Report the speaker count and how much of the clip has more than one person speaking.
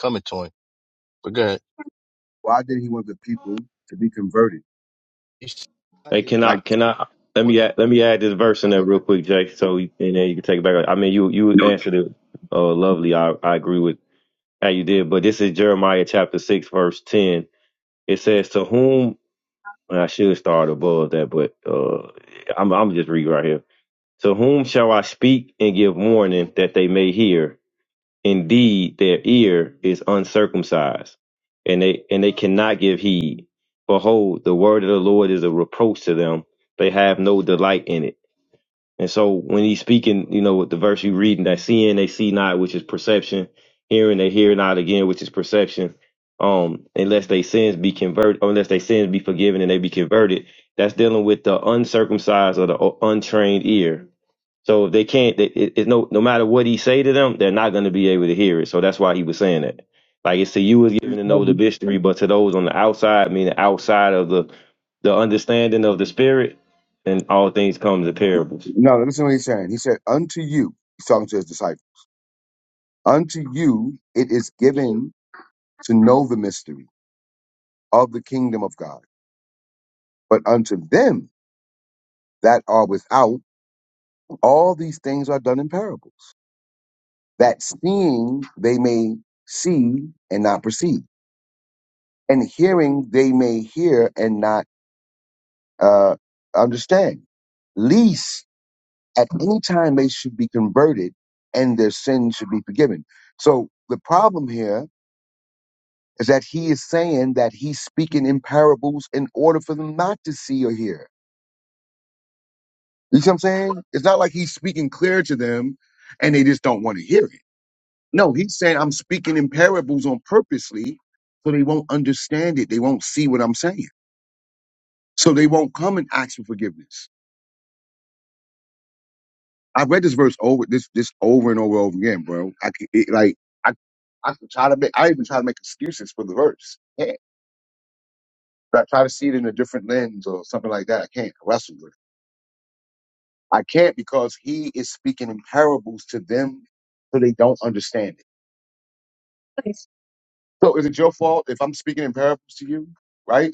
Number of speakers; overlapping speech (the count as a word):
three, about 1%